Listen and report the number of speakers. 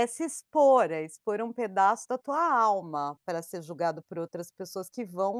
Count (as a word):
one